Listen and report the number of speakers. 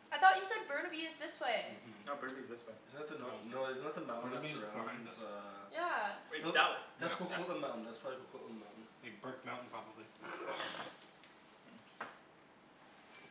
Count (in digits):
4